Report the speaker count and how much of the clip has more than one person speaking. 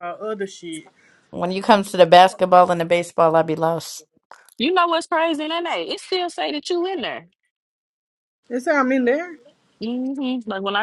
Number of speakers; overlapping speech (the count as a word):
three, no overlap